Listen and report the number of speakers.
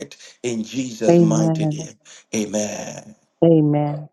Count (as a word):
two